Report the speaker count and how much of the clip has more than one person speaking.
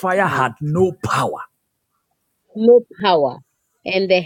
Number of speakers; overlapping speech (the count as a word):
two, about 6%